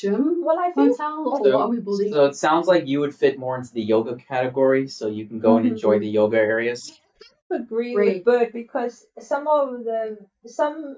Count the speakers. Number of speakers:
3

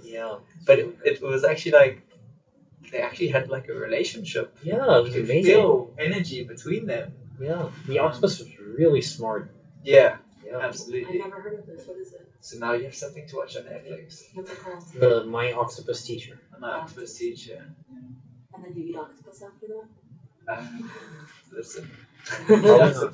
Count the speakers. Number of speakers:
3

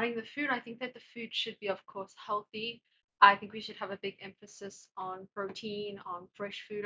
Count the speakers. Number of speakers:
1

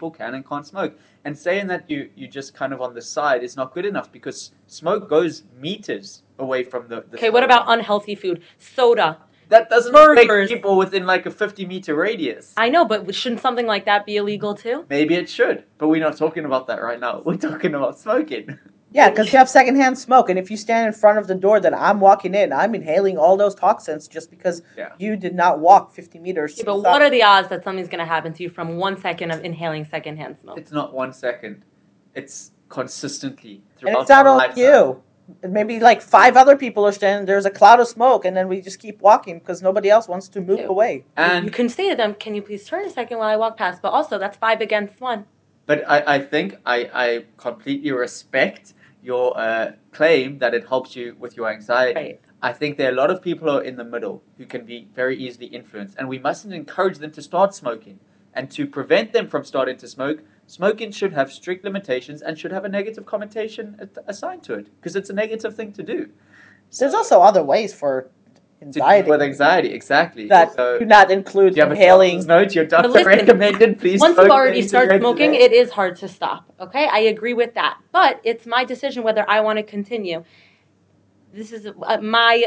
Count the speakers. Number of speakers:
3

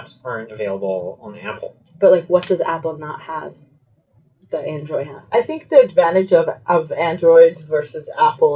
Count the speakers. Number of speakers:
3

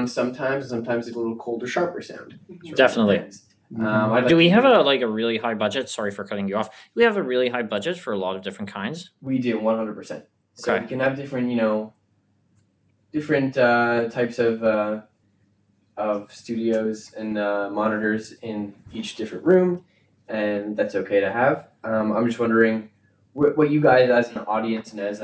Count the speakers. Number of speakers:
2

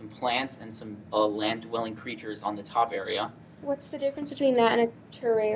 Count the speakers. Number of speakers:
2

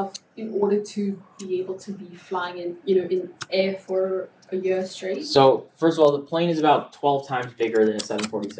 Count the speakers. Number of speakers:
2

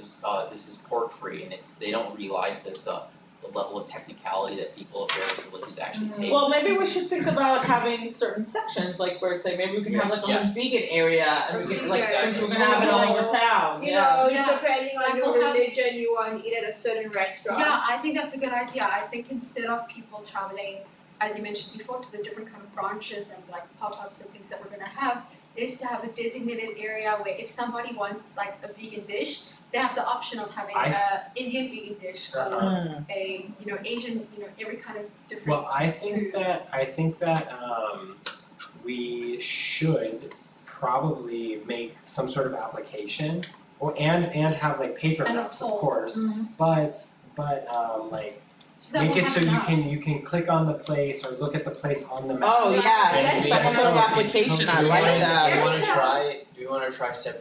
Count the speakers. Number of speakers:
6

